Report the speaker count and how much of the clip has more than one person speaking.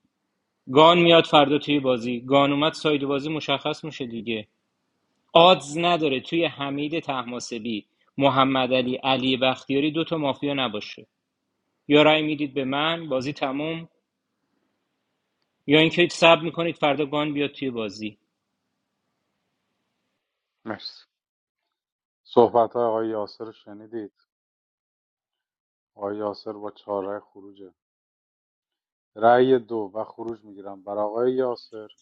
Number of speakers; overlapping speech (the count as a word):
two, no overlap